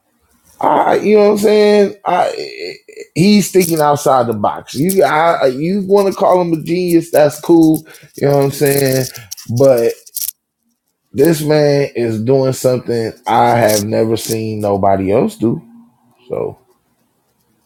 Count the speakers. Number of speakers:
one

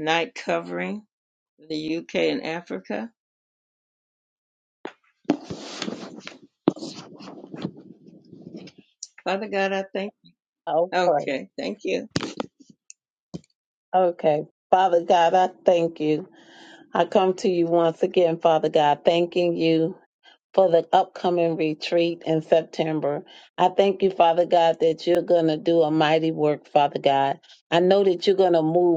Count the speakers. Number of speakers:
two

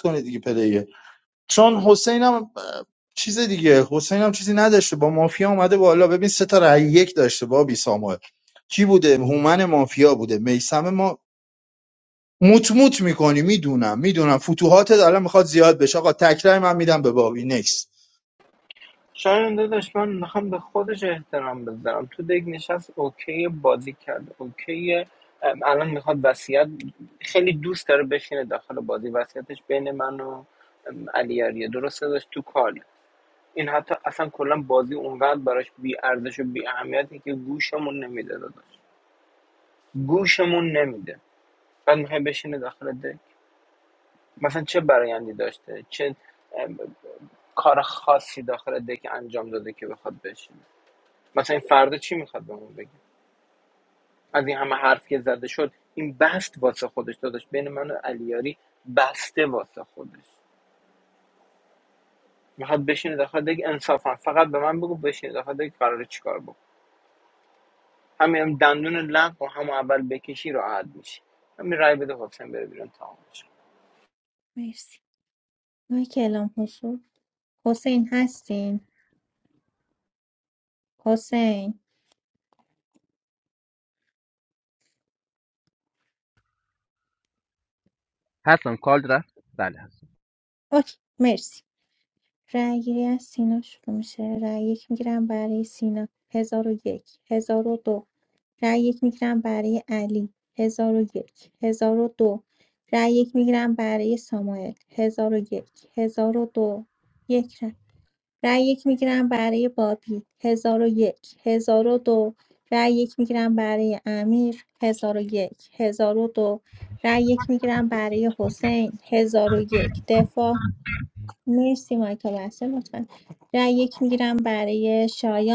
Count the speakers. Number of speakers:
four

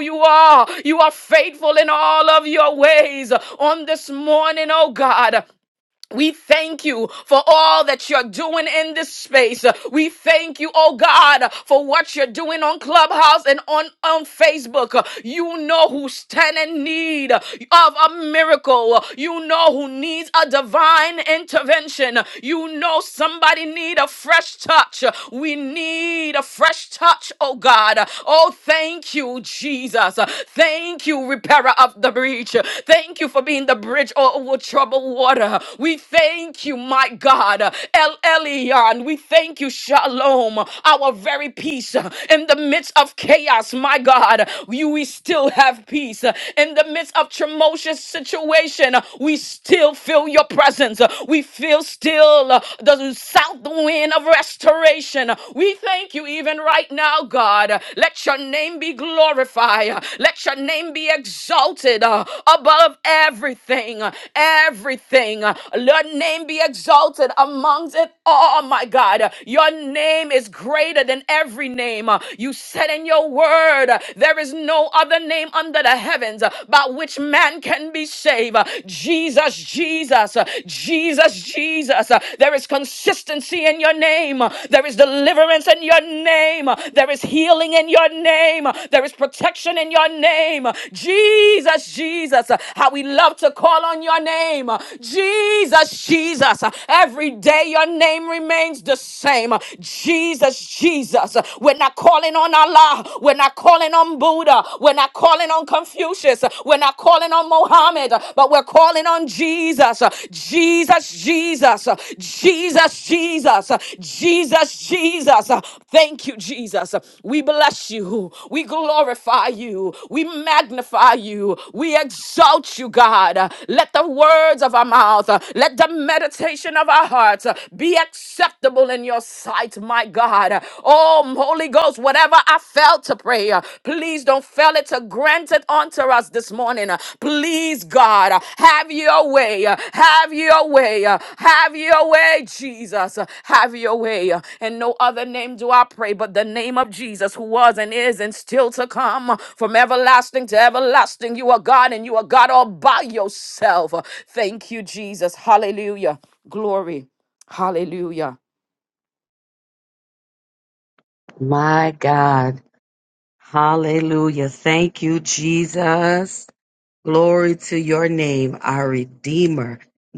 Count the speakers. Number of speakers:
two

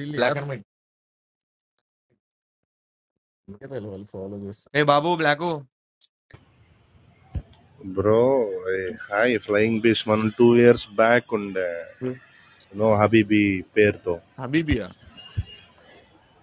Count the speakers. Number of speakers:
three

